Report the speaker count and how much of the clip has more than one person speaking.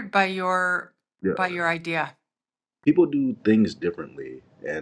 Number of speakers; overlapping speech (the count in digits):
2, about 2%